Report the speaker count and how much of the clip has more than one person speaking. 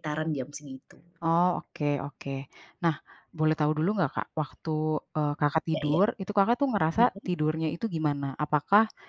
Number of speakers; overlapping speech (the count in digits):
2, about 6%